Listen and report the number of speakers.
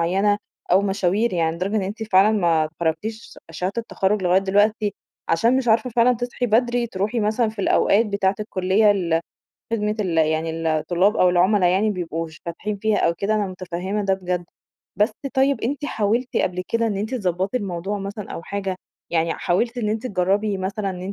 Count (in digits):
1